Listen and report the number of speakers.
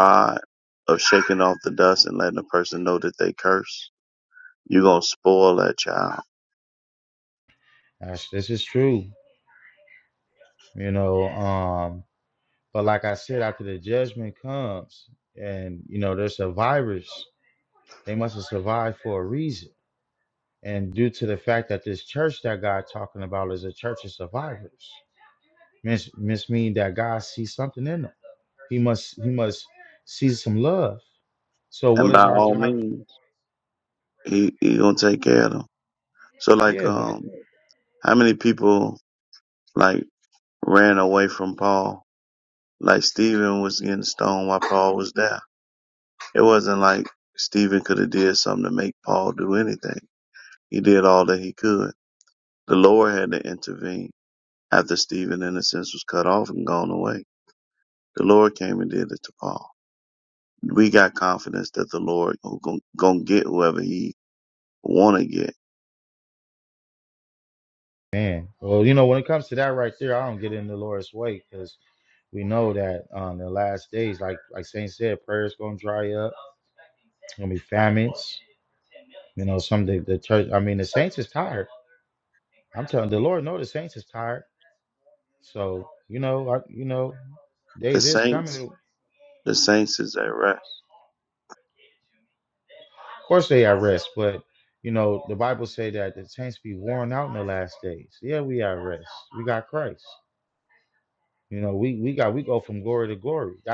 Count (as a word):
two